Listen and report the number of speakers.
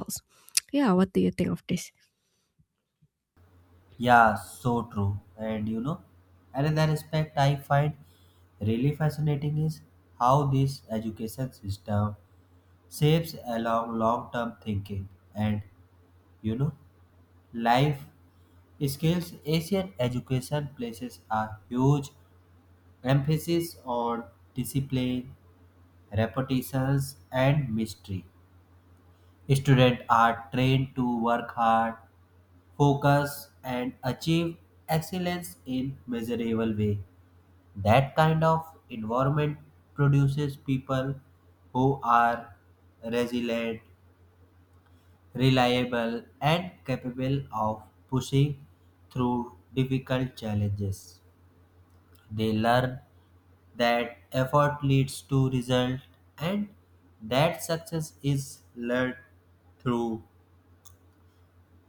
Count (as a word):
two